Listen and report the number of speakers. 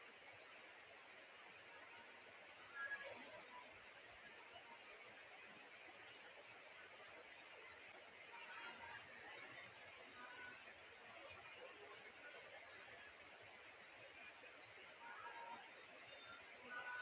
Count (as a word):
zero